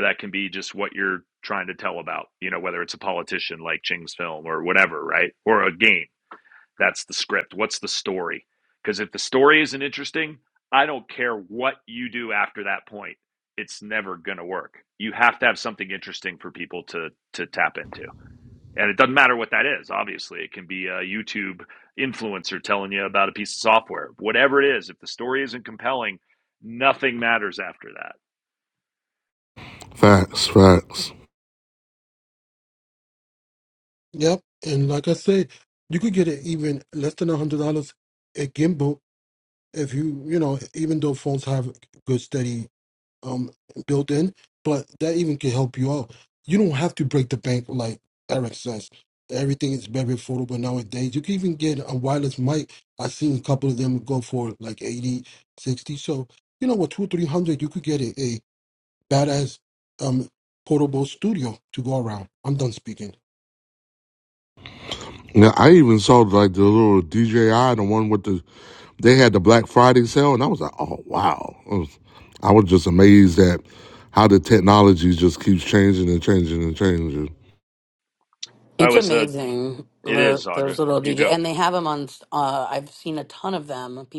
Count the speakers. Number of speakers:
four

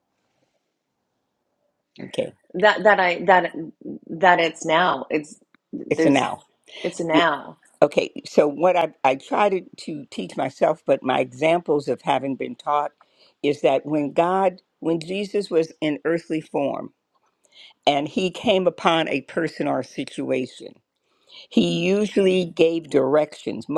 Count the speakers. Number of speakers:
two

